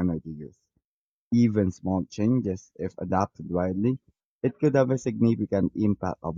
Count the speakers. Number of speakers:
1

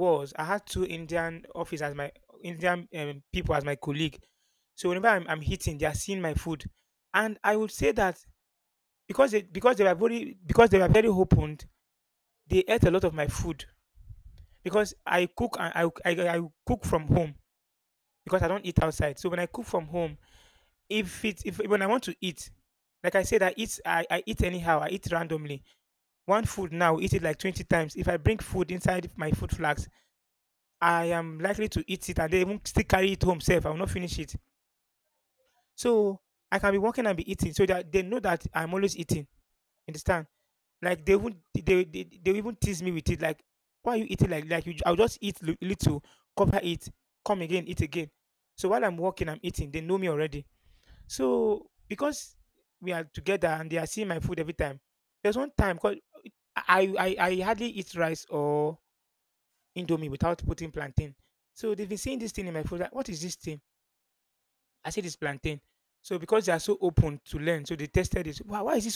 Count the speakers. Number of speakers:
1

